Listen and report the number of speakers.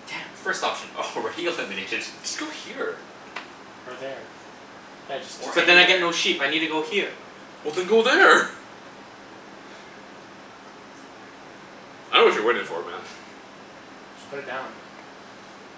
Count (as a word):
four